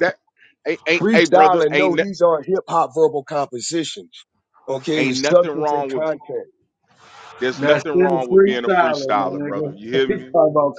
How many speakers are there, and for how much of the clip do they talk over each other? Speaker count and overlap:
3, about 43%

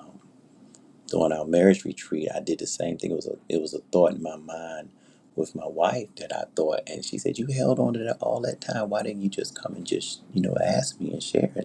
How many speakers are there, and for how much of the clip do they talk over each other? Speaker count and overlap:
1, no overlap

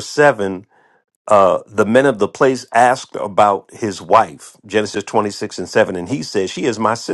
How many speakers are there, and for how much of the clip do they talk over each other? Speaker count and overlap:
1, no overlap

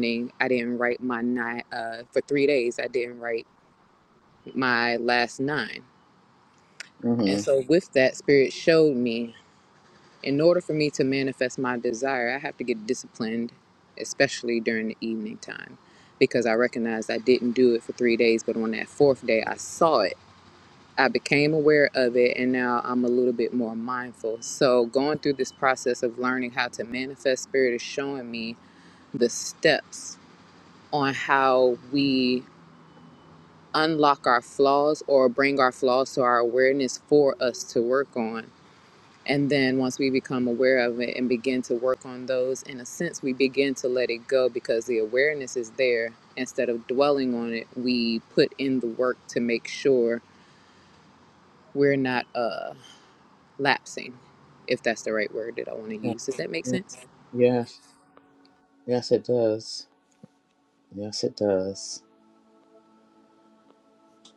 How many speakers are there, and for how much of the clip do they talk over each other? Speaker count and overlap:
2, about 1%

